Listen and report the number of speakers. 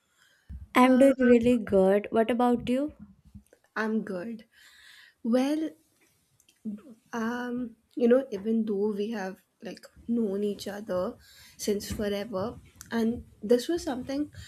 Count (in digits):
2